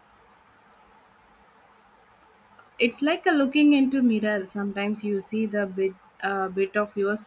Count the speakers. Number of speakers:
one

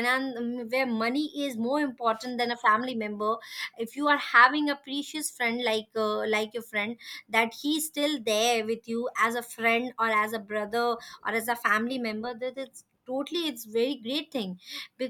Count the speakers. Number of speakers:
one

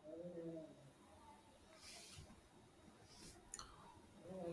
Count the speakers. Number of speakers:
zero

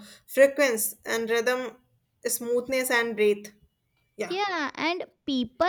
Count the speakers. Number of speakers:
two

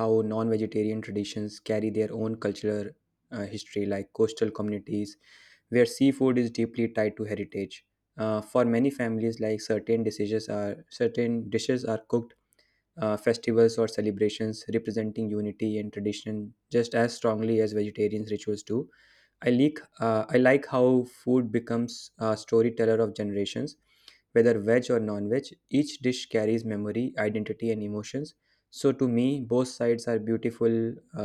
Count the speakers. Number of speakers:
one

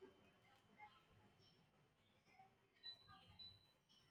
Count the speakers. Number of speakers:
zero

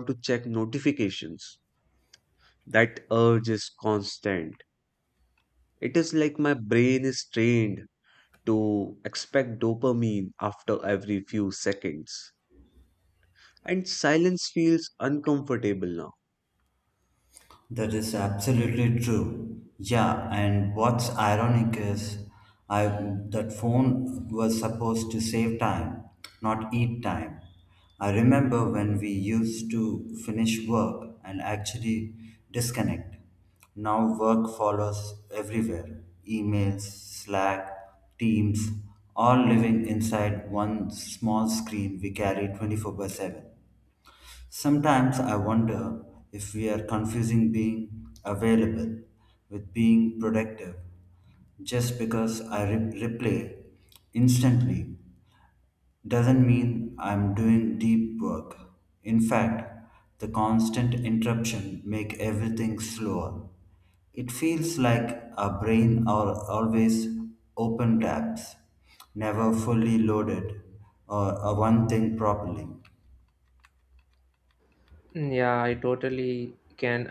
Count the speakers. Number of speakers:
three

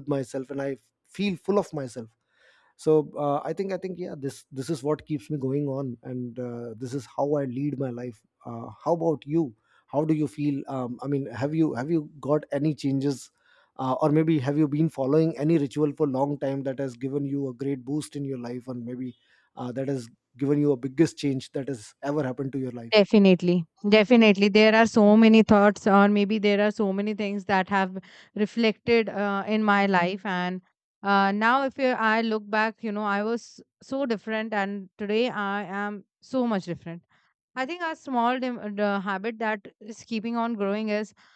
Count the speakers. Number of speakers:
two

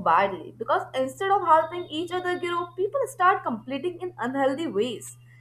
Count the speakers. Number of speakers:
one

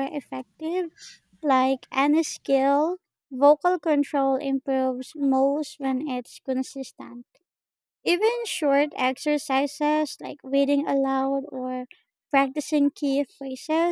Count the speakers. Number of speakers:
one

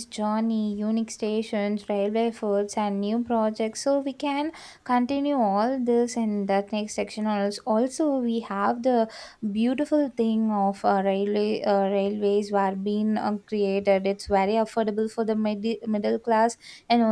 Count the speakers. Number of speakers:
one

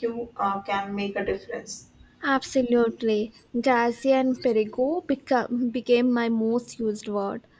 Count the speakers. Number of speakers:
two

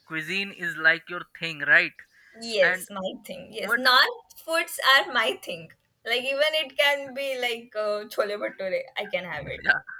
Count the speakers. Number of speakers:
two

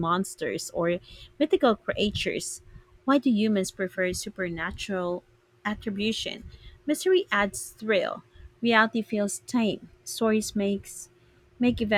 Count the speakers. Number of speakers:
one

